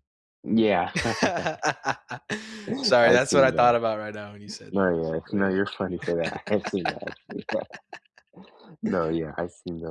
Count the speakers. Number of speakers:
2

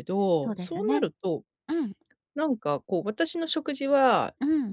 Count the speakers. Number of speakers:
2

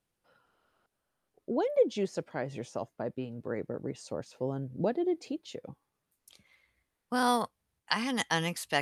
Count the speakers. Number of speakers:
2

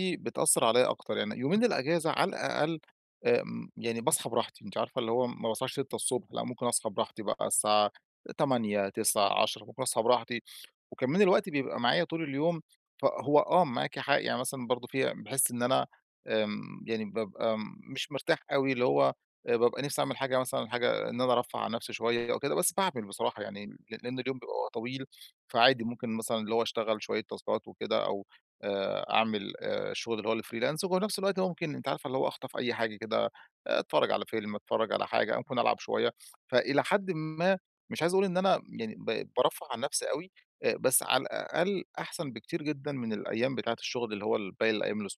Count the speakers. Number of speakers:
1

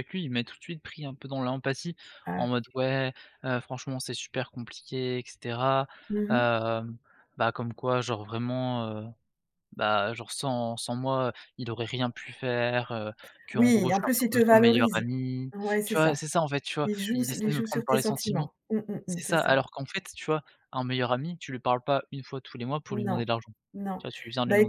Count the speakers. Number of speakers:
2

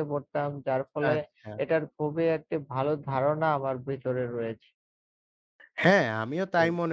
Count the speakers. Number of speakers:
2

